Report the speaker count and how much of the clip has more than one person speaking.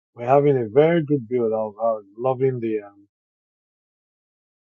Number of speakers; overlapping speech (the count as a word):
one, no overlap